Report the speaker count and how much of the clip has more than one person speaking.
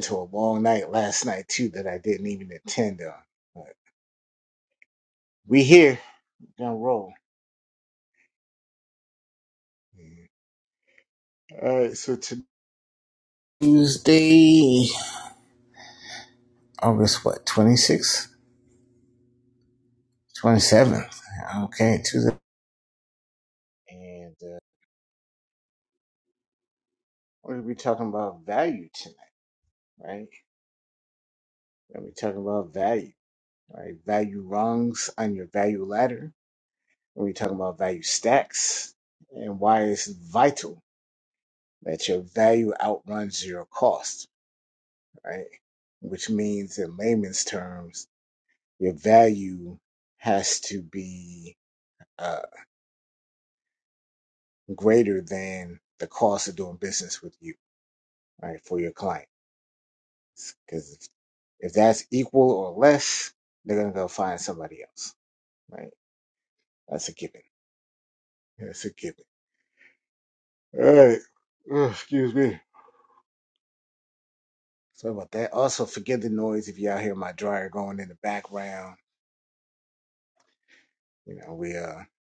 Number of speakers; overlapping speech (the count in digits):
1, no overlap